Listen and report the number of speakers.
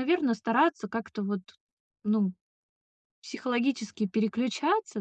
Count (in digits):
1